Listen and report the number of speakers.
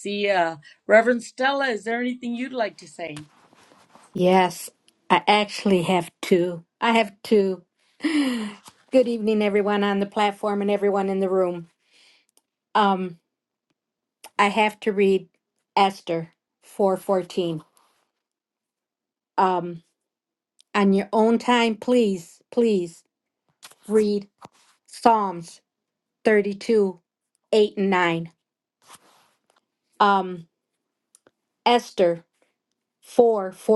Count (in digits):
2